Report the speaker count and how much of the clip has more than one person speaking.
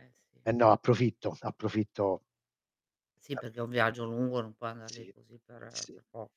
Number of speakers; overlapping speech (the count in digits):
2, about 6%